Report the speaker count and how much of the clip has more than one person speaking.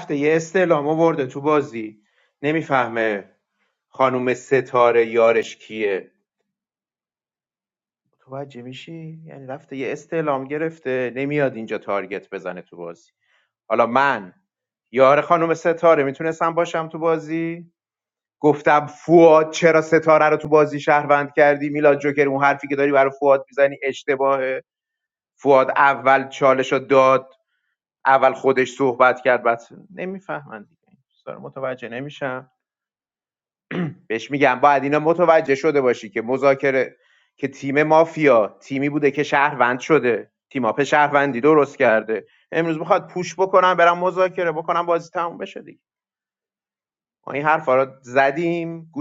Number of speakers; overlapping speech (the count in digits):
1, no overlap